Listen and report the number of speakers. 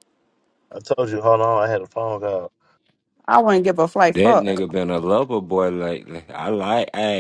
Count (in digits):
3